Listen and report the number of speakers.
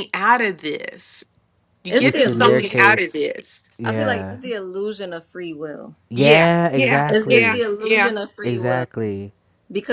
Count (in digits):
3